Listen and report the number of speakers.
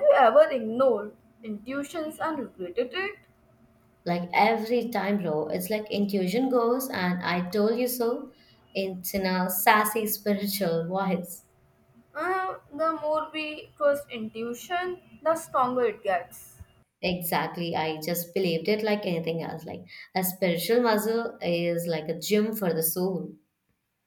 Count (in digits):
2